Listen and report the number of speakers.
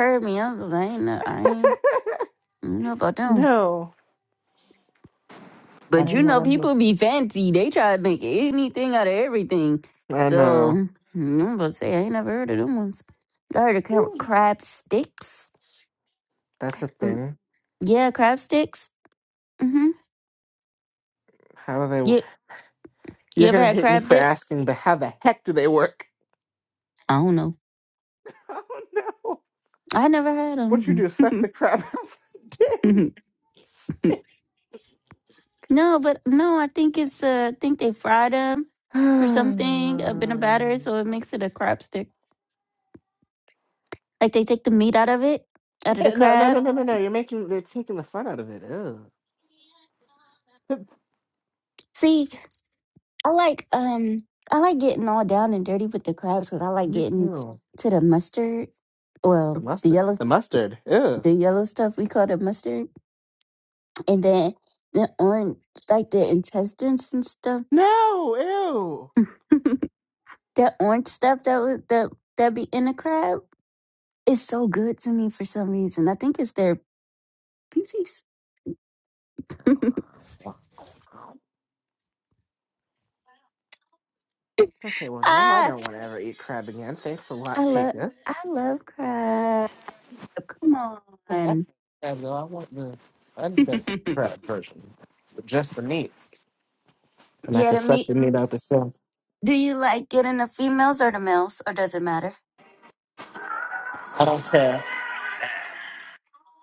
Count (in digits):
2